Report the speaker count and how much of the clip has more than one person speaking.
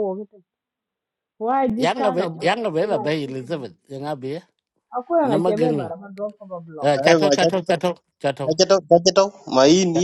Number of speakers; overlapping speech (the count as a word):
three, about 28%